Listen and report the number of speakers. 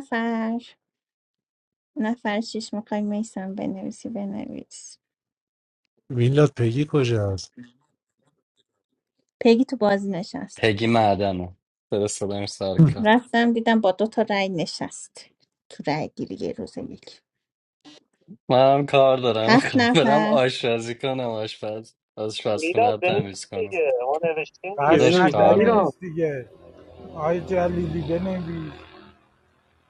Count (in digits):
5